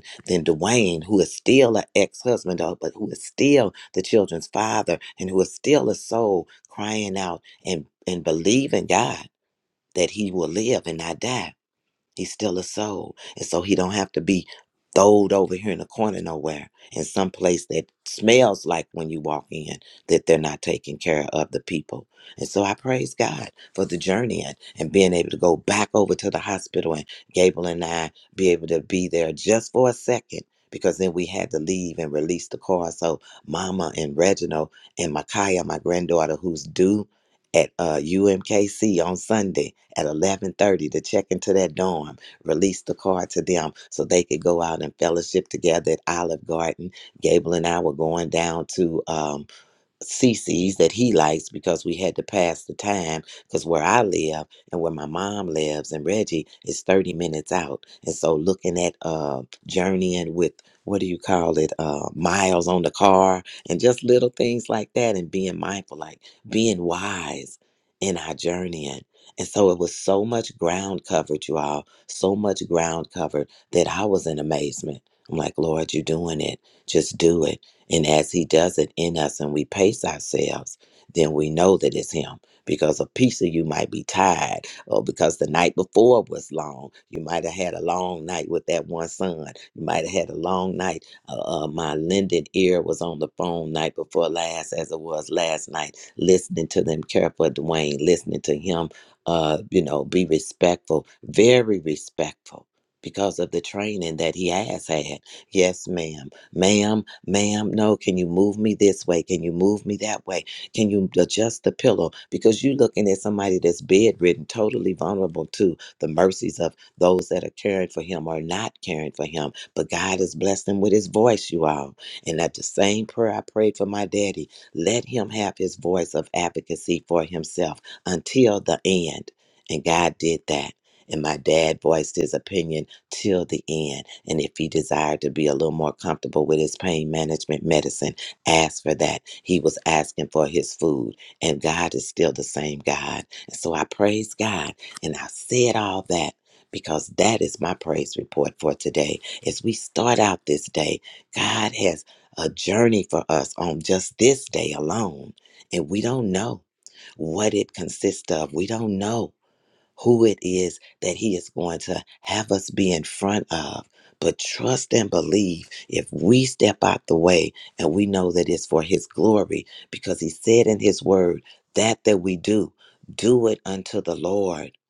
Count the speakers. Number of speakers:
1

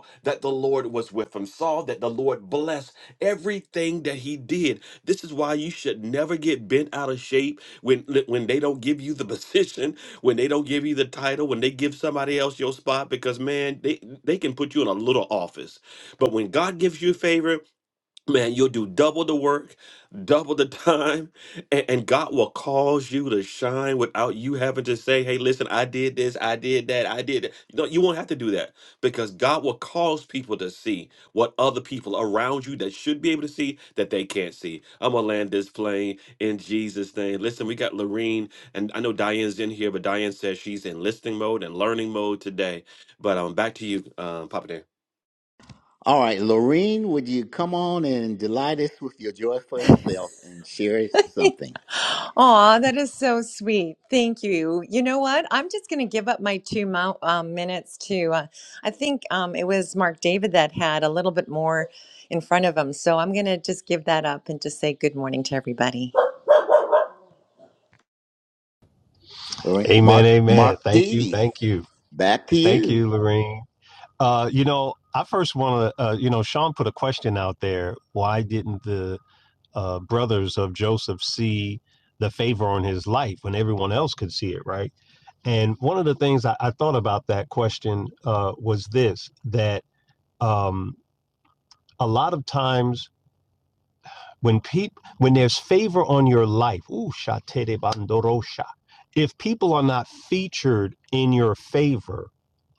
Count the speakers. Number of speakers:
4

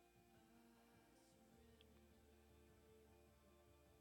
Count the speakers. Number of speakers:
0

